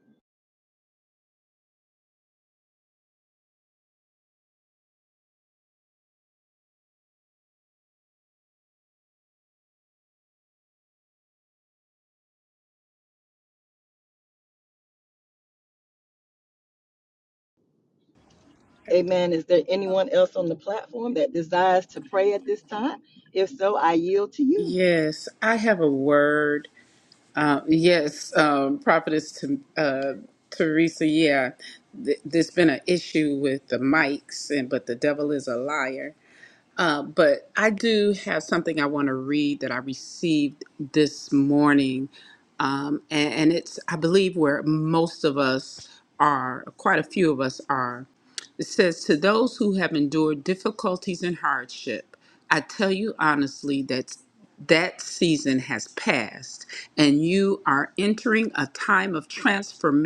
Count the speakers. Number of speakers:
2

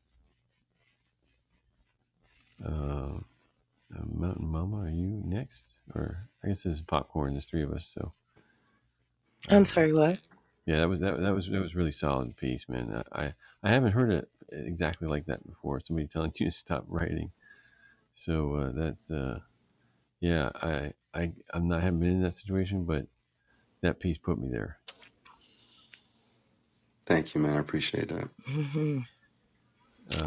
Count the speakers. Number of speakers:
3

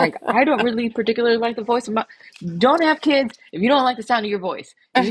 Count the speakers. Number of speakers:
1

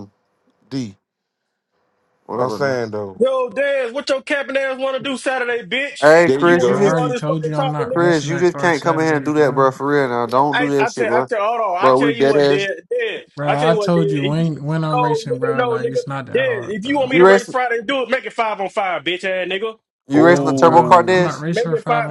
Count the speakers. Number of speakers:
4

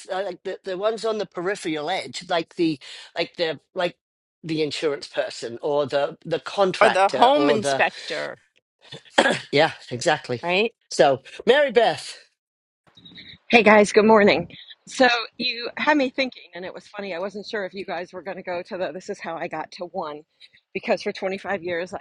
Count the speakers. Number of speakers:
3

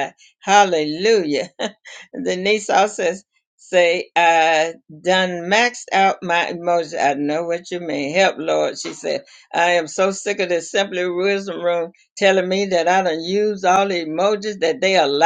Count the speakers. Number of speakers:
1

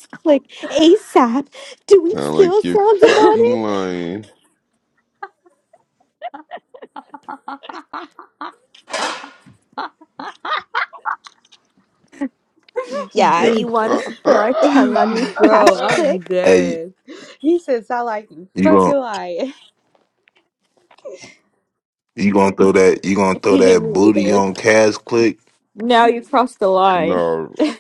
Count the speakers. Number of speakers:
4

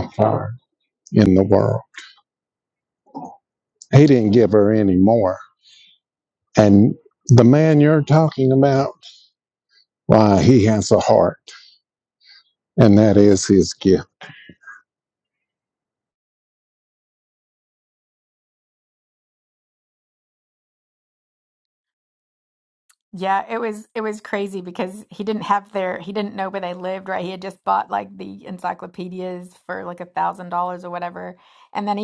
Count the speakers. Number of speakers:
2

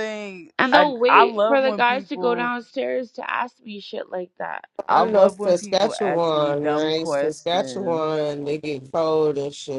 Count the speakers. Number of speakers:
3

